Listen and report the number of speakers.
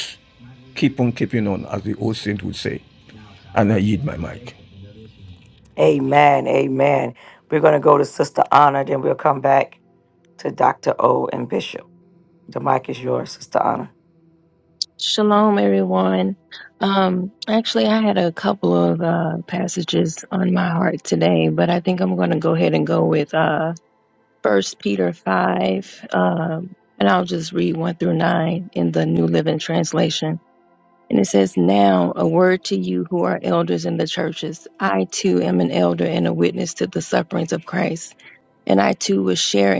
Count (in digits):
3